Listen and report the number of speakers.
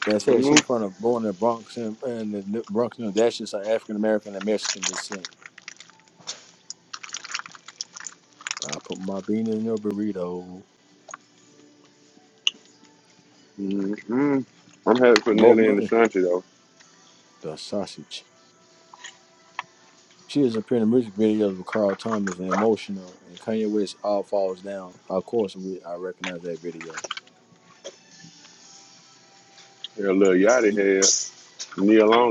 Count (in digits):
2